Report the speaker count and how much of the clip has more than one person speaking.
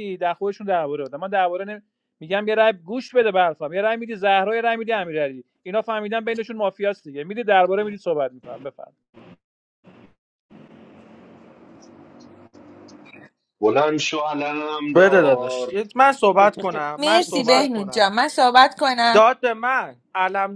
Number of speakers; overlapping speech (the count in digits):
4, about 9%